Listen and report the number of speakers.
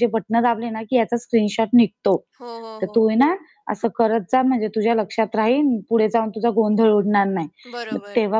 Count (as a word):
two